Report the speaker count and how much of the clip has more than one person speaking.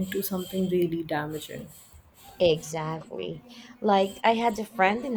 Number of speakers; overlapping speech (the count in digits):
2, no overlap